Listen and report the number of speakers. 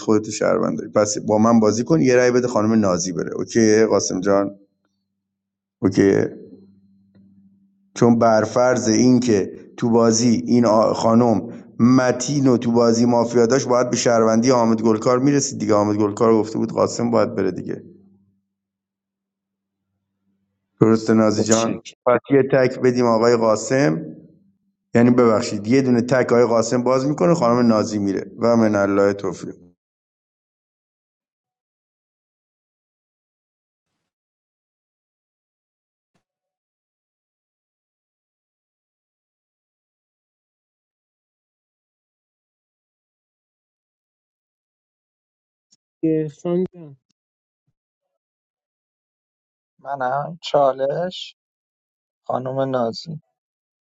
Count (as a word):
three